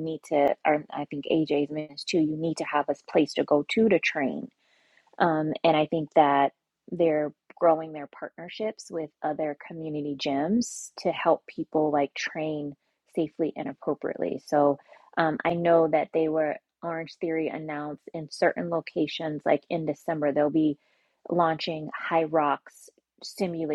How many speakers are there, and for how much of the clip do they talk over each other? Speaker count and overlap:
1, no overlap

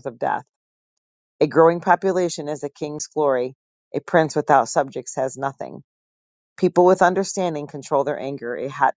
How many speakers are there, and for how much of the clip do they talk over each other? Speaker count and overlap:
1, no overlap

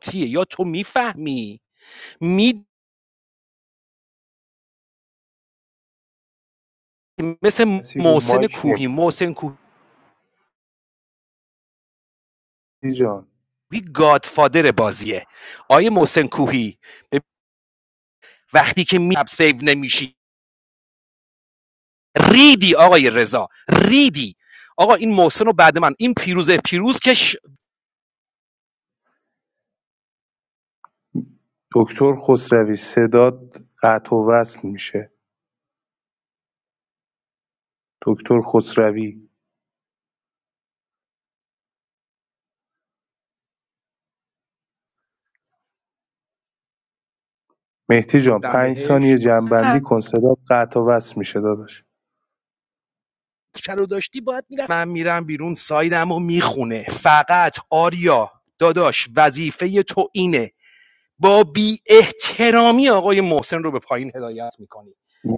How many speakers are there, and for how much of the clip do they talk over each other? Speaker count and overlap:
2, about 3%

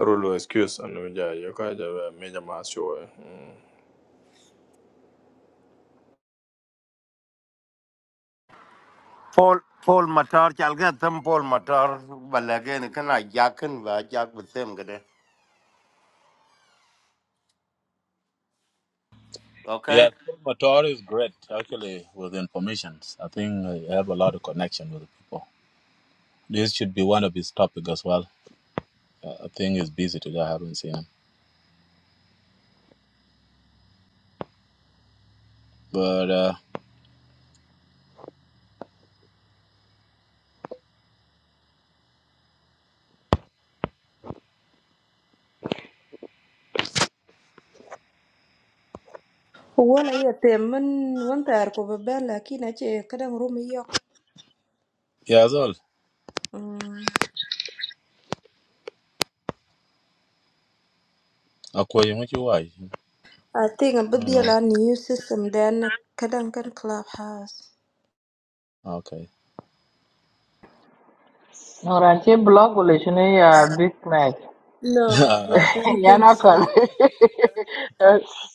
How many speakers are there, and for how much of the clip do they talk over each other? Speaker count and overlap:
5, about 2%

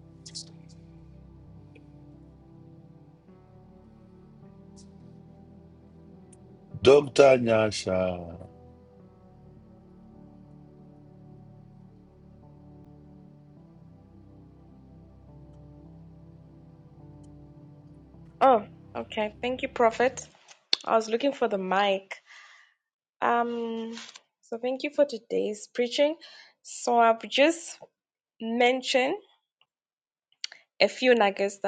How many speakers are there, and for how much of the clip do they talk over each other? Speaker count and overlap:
2, no overlap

